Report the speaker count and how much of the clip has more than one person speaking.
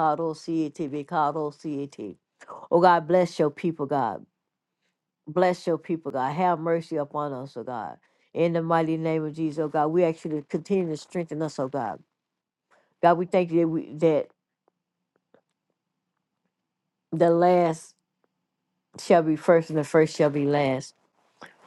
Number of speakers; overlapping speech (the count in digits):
1, no overlap